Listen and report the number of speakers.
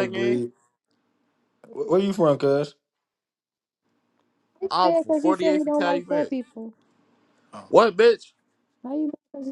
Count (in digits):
3